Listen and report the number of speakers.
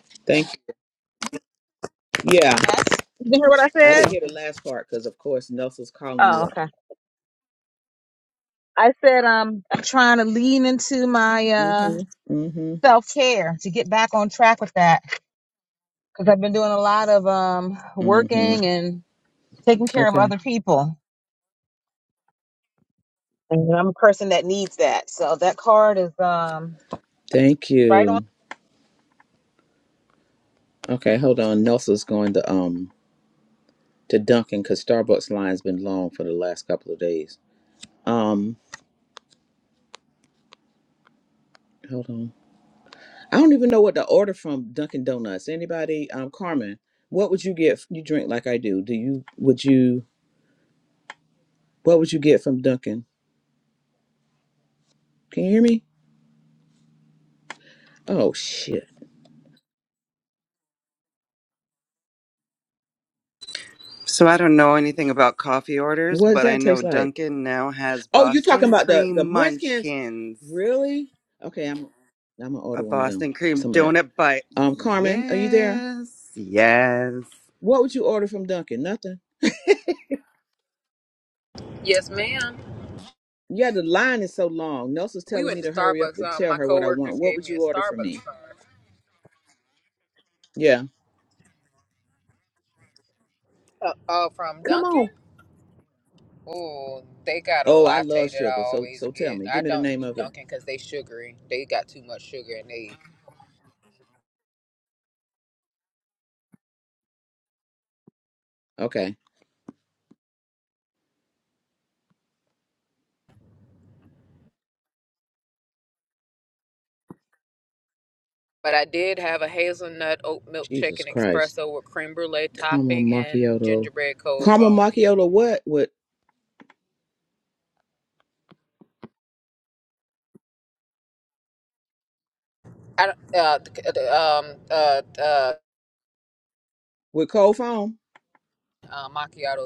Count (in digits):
4